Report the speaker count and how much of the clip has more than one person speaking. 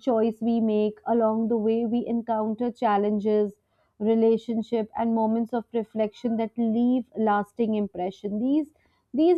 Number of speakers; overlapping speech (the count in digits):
1, no overlap